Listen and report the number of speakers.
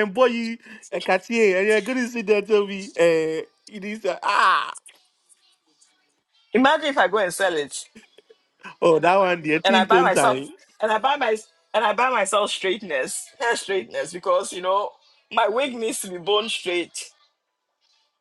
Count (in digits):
2